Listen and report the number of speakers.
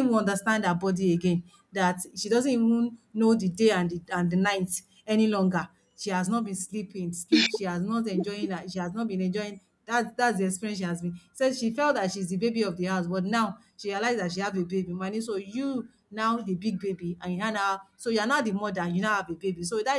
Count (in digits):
1